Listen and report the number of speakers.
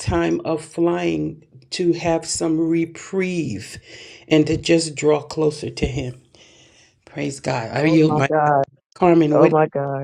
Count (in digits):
2